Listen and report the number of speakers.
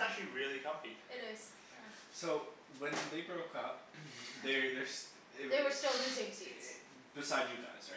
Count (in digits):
3